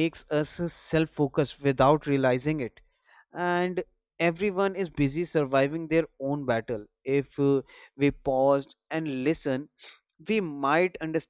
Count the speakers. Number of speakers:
1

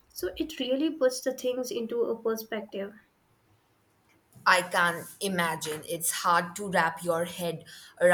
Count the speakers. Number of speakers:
2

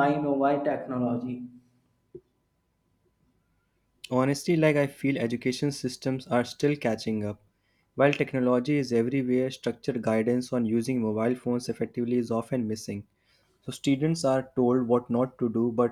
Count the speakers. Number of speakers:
2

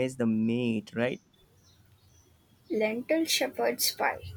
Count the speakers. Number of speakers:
2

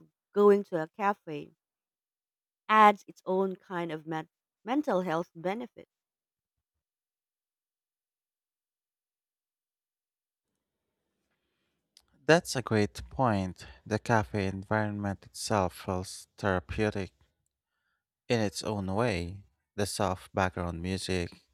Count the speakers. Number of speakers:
2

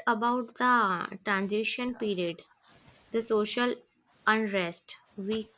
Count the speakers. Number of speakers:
1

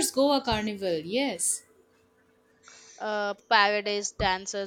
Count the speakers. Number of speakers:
2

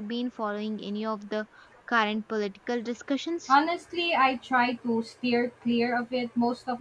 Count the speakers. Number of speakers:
2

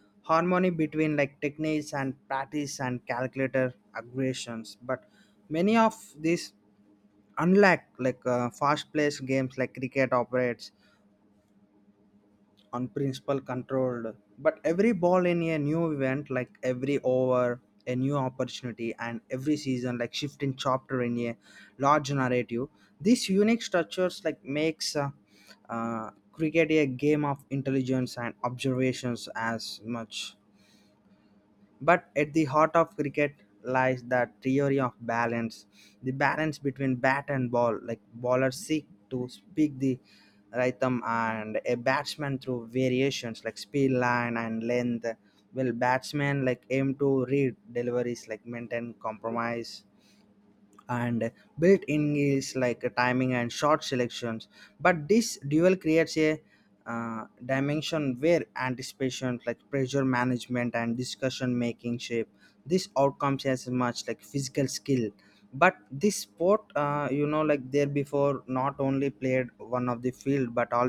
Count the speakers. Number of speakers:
1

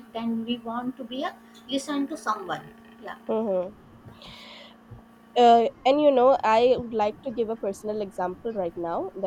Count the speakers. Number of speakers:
2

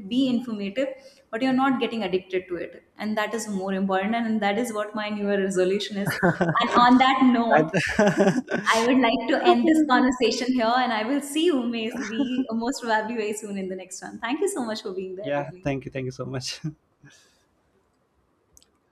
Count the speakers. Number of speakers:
2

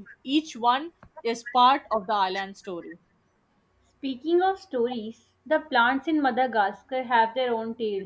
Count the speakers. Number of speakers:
2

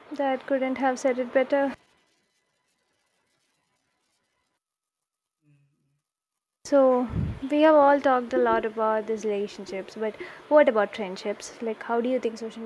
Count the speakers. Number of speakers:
1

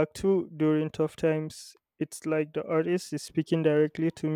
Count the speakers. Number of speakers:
1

